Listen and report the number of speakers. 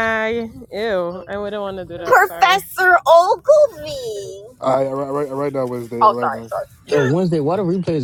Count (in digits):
4